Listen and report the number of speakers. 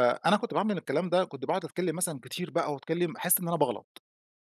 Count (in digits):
1